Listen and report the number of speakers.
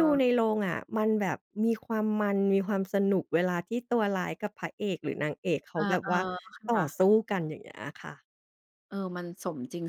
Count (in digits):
2